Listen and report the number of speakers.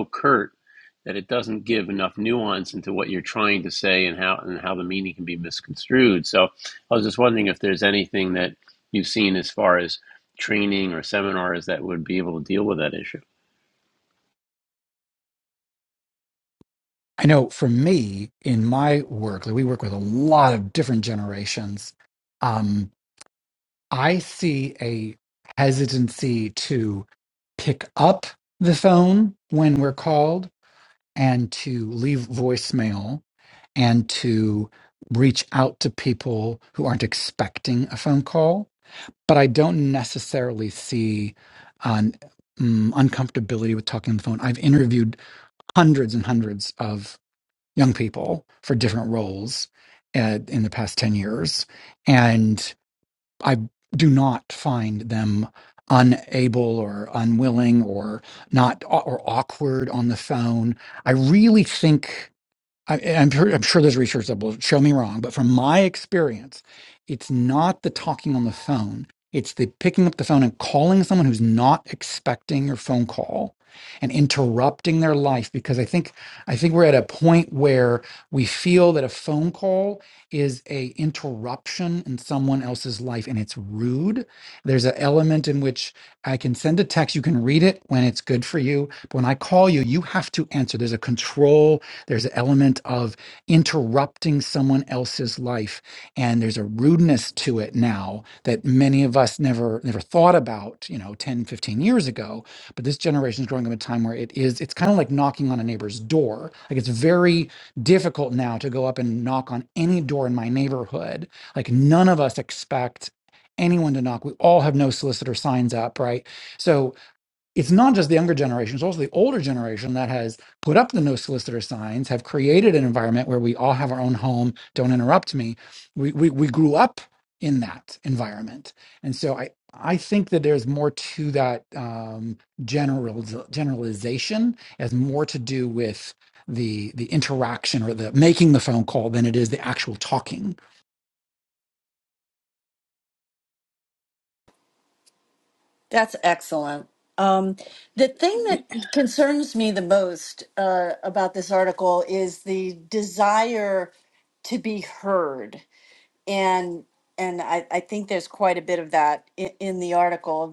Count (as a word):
three